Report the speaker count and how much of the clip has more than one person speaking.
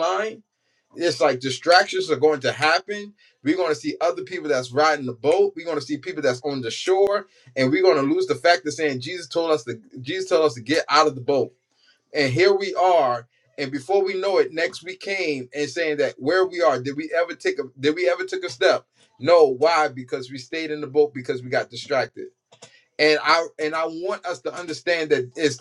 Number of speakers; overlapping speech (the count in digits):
1, no overlap